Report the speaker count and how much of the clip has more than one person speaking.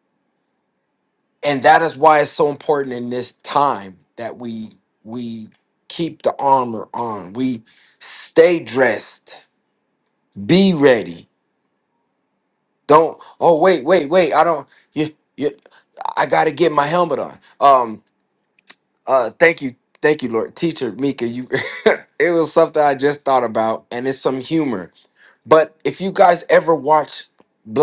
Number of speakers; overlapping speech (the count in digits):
1, no overlap